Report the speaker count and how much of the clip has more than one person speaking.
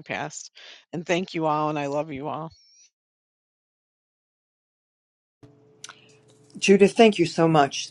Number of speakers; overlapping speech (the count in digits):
2, no overlap